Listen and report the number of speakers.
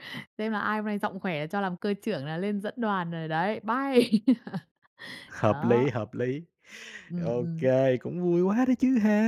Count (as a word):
two